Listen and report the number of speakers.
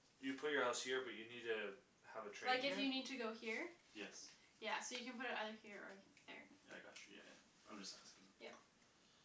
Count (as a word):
three